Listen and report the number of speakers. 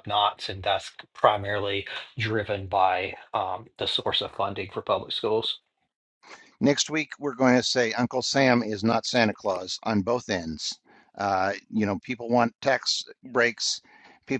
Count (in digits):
2